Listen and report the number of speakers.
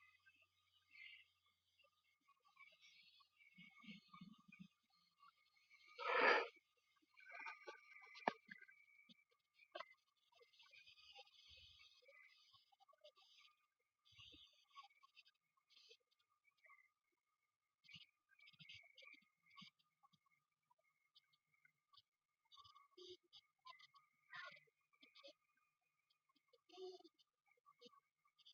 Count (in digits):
0